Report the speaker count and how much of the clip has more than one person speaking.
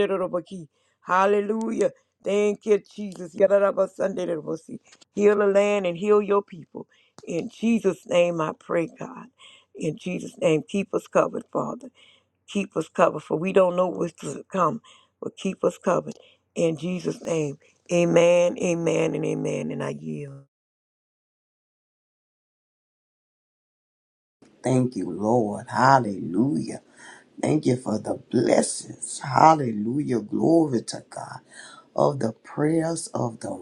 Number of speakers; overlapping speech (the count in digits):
2, no overlap